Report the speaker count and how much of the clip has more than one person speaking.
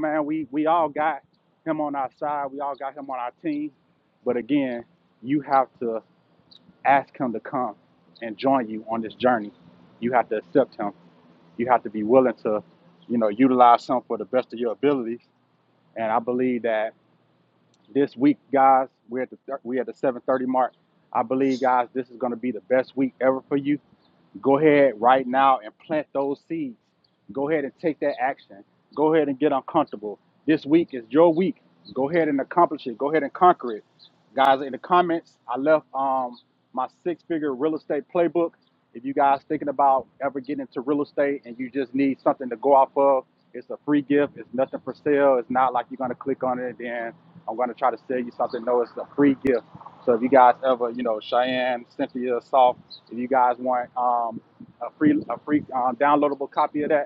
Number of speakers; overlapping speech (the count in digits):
1, no overlap